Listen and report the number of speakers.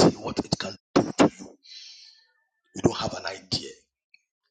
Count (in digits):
1